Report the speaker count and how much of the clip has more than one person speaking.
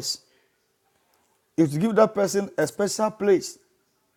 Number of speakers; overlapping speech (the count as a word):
one, no overlap